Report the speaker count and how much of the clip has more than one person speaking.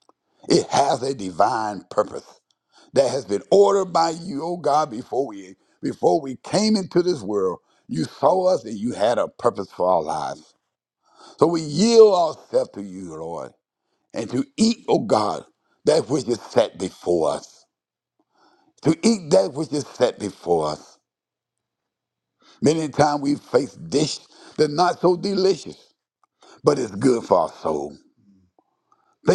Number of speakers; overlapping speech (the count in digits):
1, no overlap